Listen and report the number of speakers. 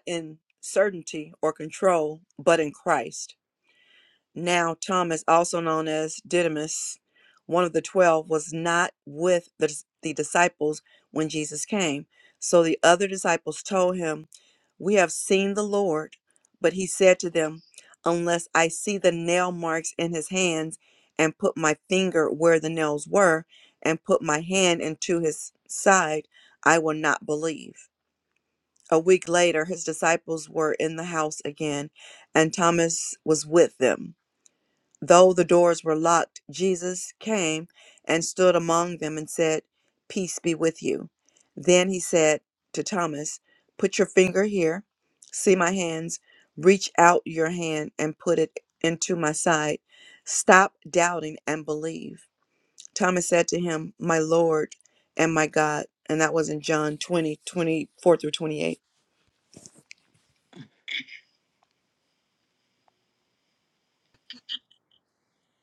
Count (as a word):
one